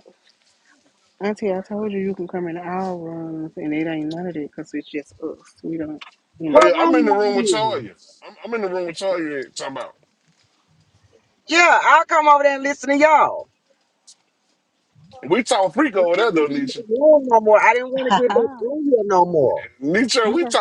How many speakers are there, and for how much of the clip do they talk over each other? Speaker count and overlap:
3, about 13%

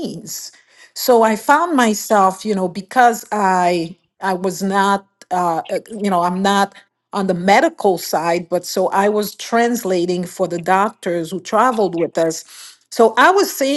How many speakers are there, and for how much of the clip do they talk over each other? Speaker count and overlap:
1, no overlap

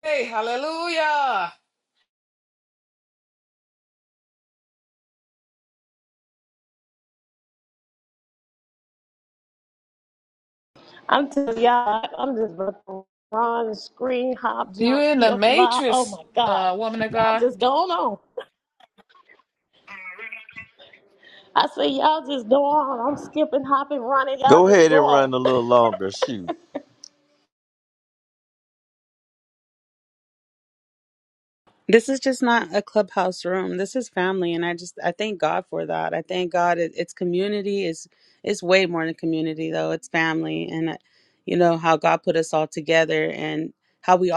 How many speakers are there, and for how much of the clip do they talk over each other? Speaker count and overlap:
4, about 6%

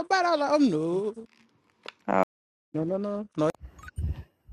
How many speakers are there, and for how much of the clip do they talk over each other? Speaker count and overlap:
1, no overlap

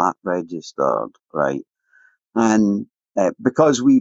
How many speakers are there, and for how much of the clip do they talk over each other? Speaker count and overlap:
1, no overlap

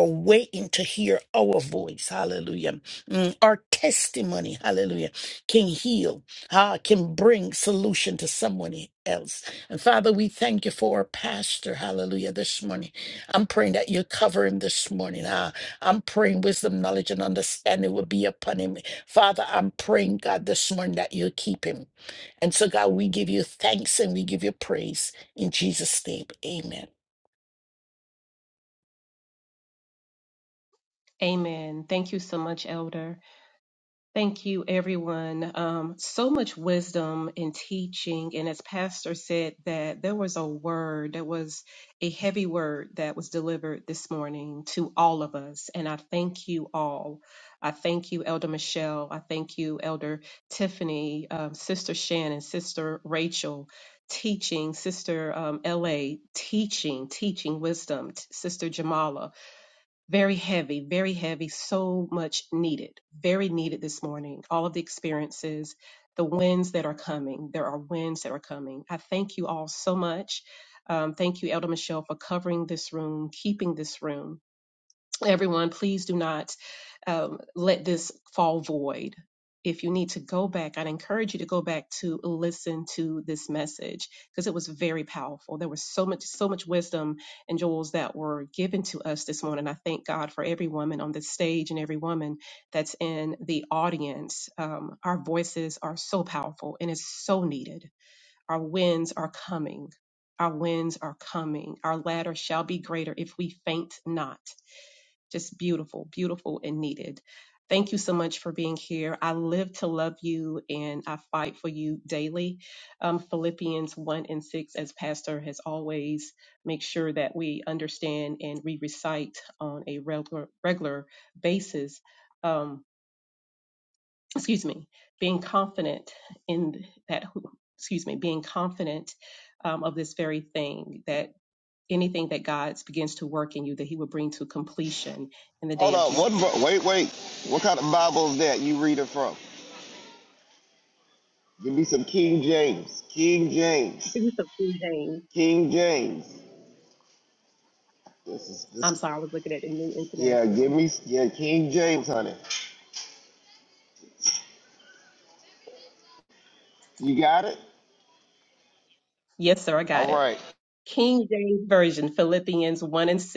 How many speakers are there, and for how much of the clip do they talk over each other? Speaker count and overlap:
3, about 1%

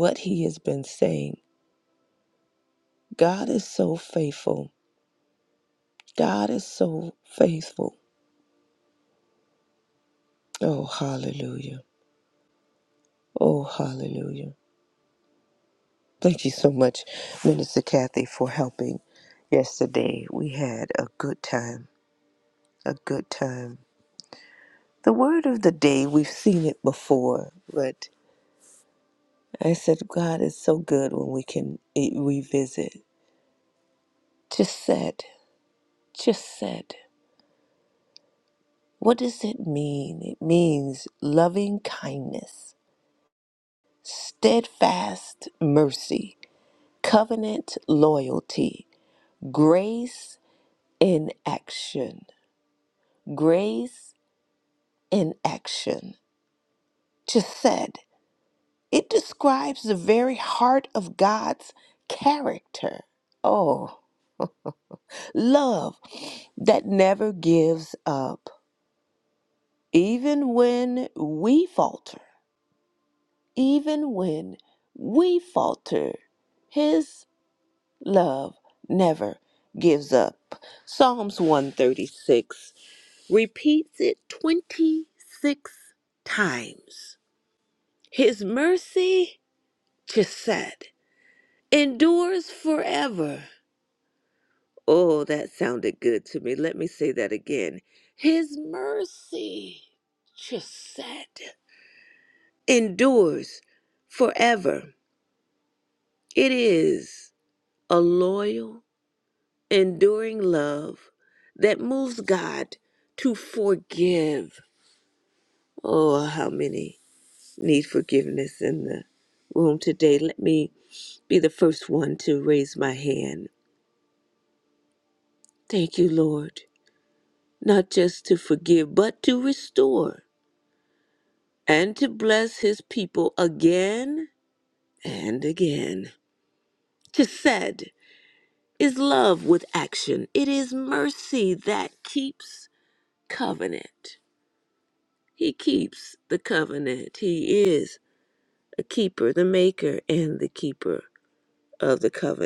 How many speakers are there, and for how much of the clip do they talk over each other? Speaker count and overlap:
1, no overlap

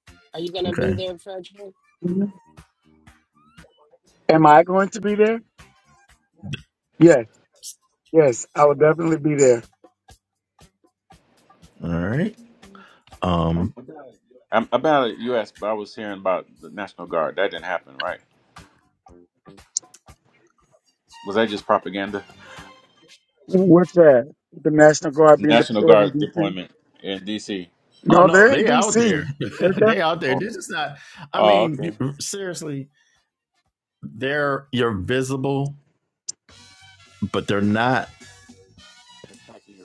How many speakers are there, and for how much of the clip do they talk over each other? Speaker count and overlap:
4, about 9%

